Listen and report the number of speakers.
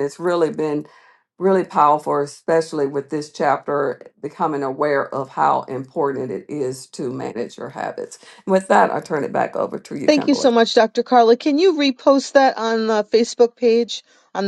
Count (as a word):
two